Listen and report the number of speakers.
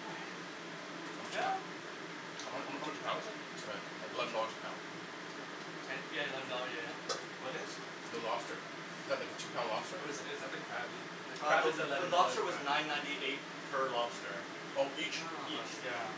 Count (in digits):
3